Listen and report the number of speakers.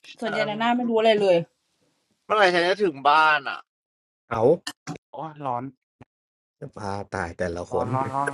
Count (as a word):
four